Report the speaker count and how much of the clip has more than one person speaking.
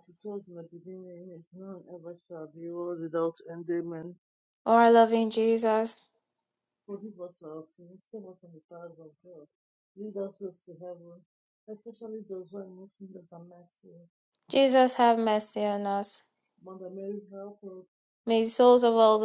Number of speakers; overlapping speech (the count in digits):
2, no overlap